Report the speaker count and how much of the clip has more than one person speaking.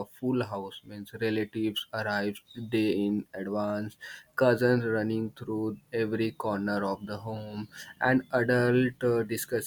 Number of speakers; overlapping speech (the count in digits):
1, no overlap